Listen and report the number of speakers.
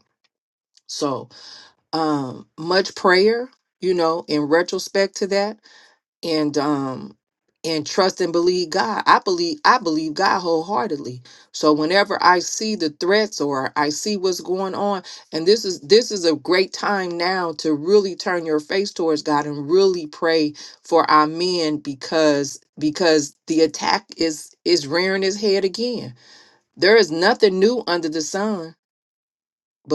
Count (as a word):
one